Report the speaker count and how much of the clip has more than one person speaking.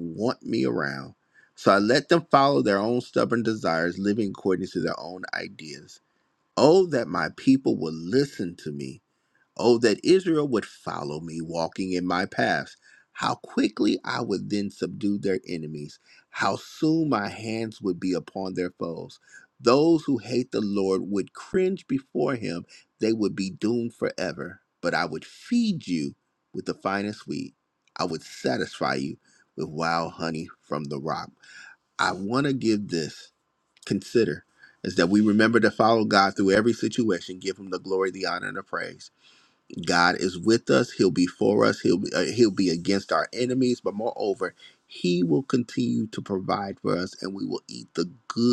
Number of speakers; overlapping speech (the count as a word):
one, no overlap